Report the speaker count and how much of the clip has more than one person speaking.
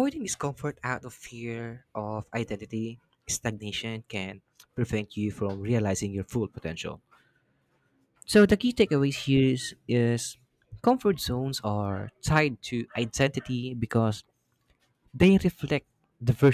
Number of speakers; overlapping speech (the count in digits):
1, no overlap